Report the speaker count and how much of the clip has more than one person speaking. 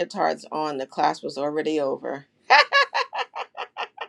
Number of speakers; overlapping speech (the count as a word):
one, no overlap